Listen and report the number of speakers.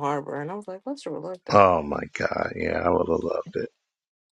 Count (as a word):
two